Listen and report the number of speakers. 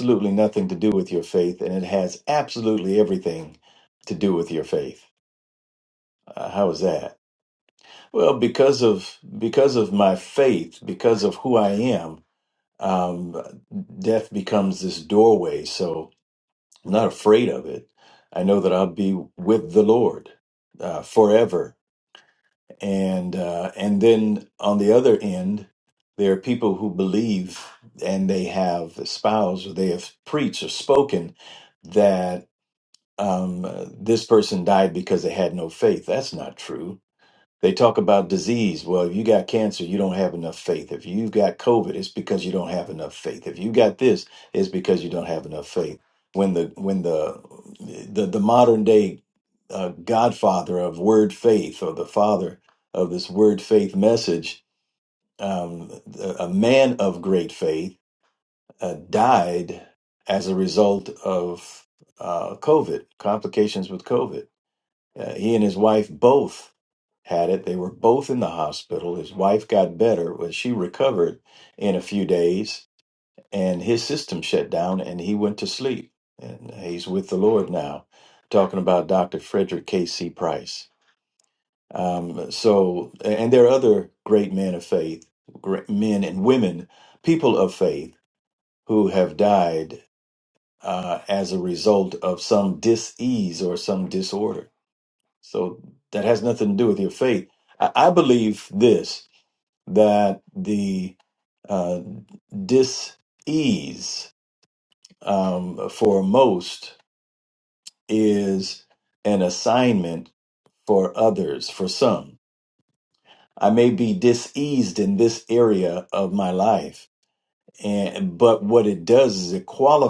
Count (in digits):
1